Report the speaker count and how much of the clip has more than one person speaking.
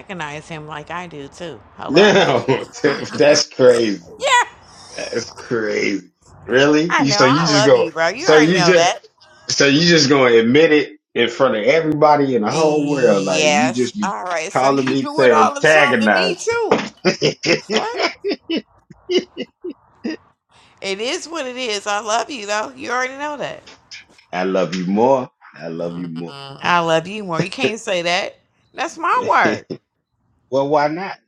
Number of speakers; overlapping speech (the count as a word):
two, about 17%